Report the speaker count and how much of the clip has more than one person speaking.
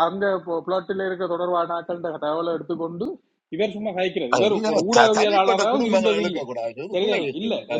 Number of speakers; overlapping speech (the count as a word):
two, about 39%